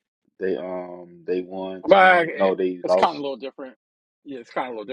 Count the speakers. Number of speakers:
2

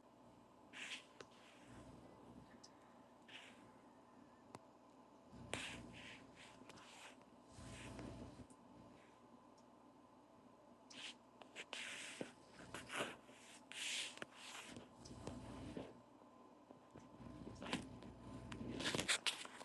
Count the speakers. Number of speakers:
0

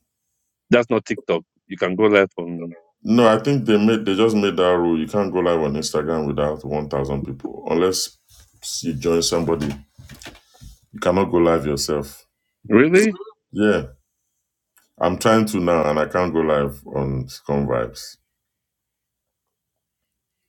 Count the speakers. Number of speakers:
2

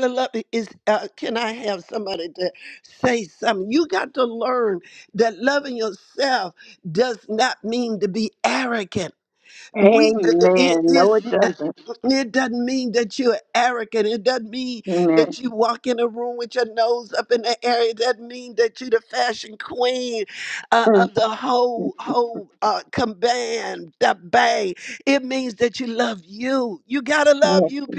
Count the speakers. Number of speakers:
2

